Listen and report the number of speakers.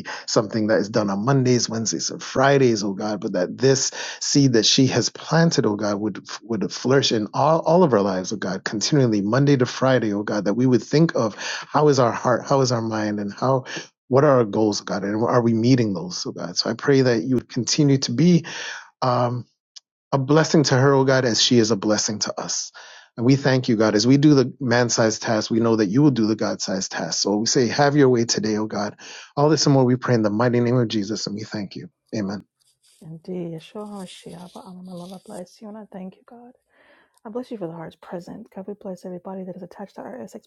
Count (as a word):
two